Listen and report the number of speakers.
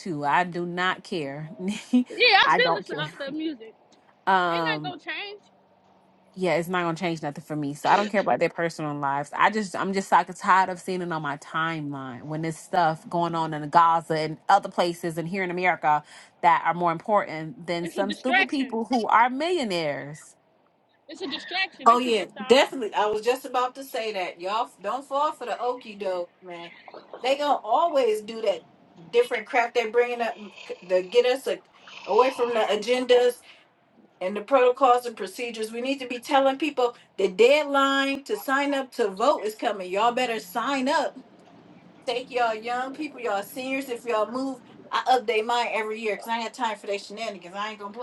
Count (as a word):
three